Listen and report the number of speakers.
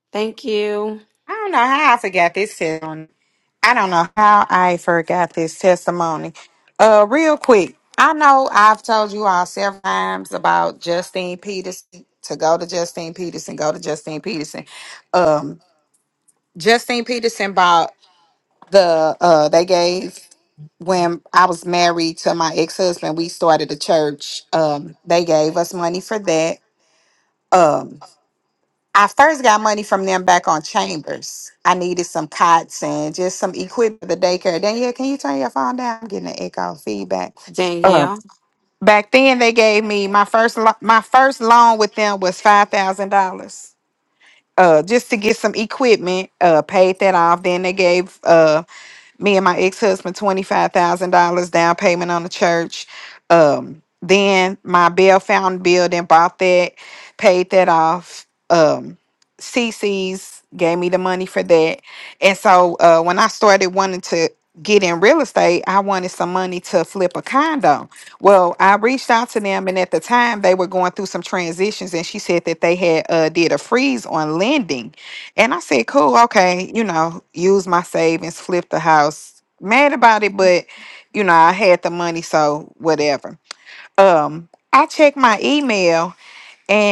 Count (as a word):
two